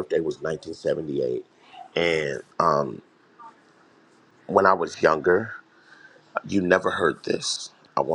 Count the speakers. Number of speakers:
1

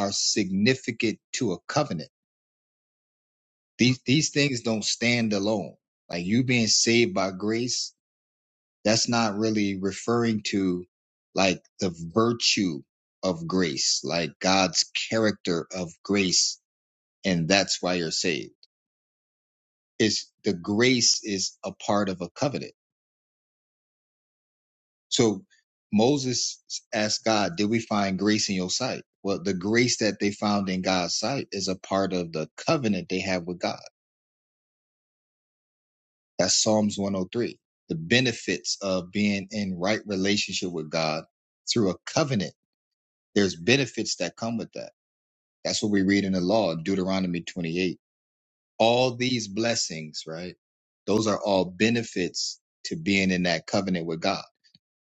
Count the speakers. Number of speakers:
1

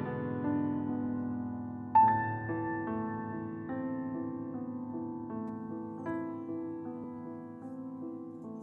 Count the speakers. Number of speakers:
0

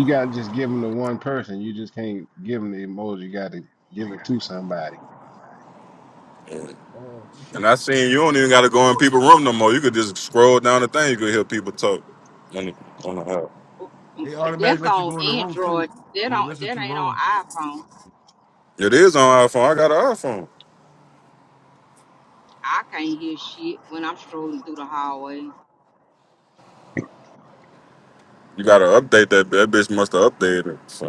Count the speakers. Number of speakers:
4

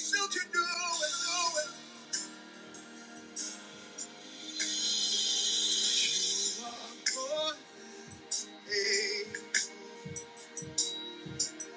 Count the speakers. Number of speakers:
0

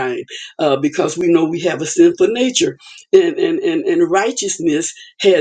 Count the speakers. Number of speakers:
1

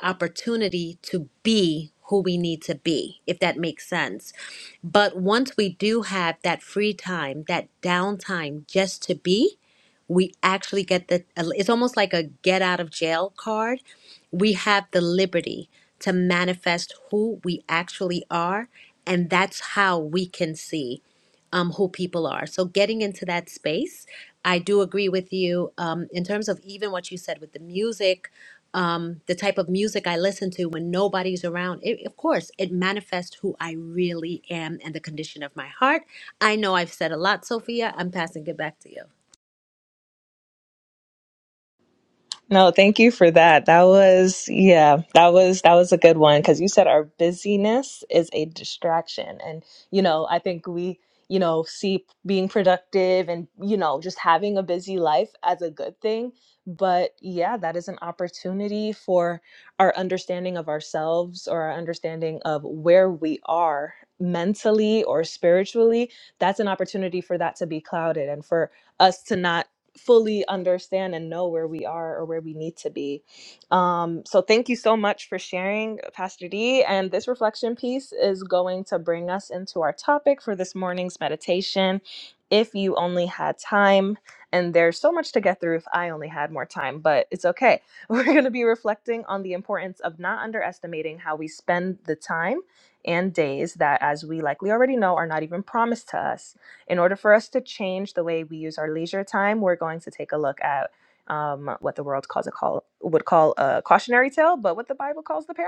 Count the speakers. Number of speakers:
2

